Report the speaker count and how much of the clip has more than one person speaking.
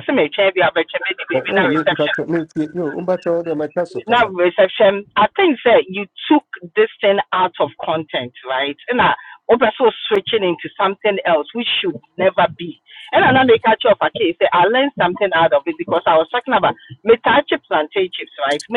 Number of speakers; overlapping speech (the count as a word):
two, about 6%